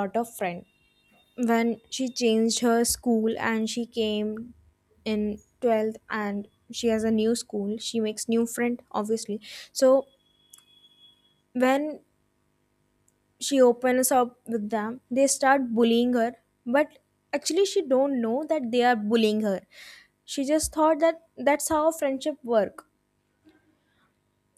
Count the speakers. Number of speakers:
1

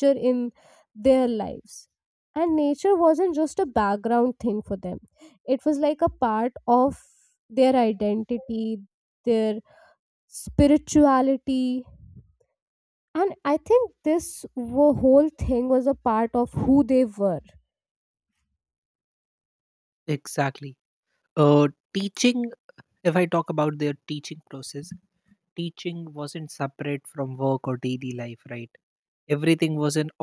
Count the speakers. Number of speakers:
2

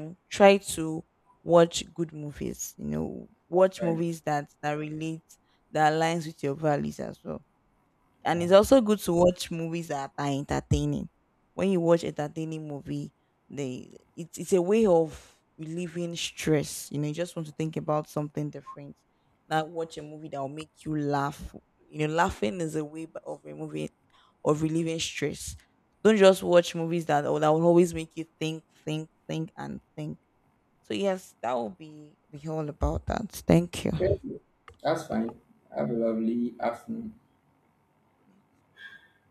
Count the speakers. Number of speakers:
2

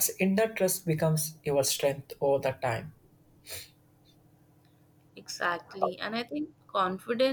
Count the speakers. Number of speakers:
2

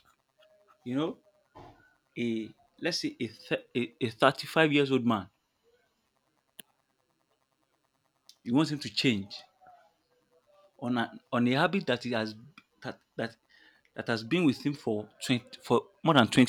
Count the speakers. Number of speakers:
1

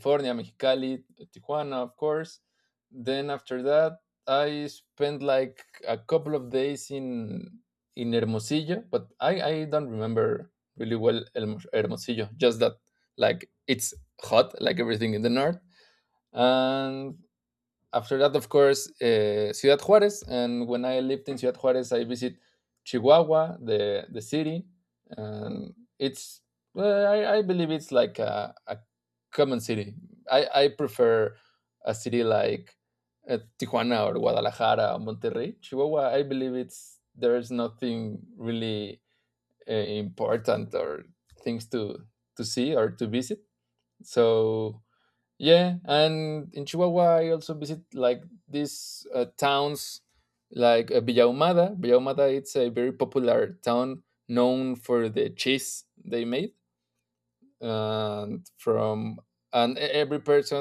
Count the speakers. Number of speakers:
1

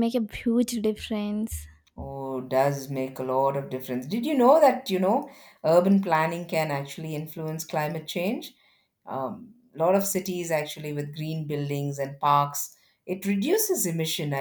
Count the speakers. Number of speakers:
2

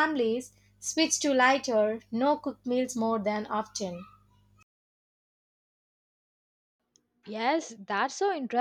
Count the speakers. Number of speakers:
2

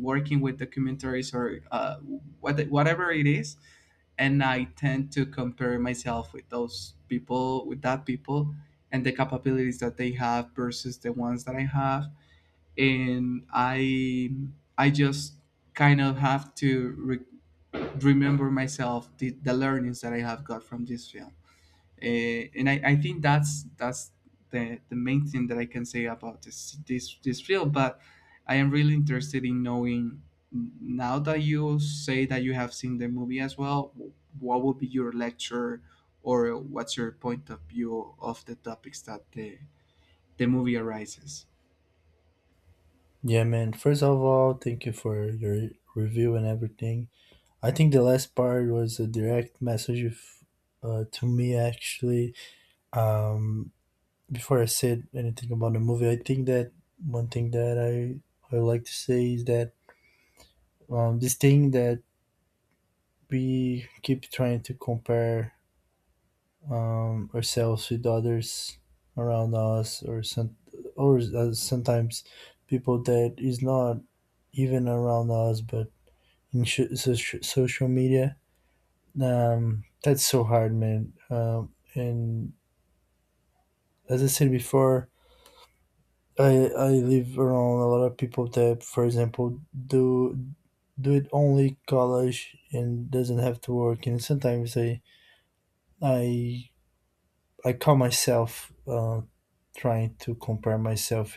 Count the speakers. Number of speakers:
2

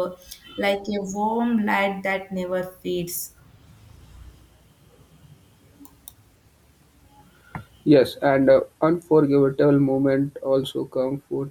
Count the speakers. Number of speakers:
2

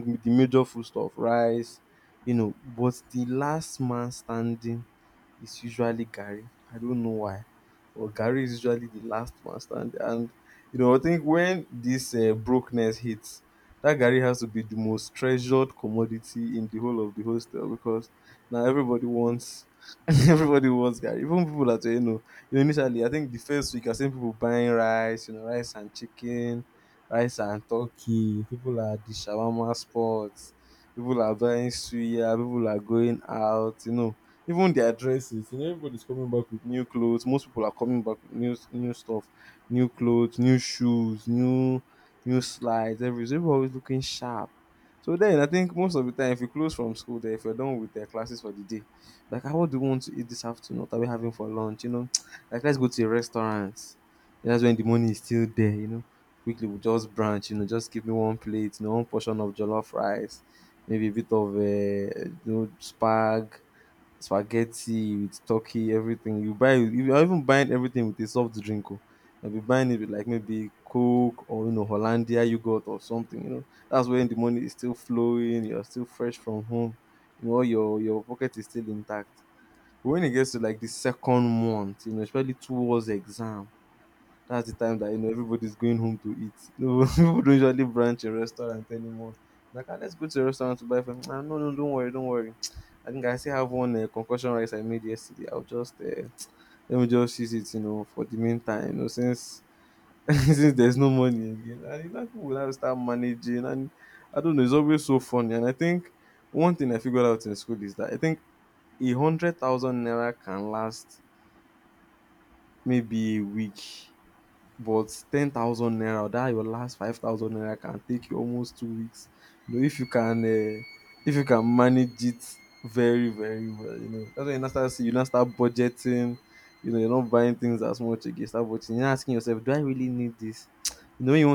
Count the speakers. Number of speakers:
1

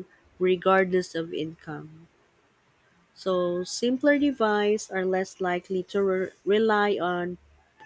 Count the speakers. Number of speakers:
1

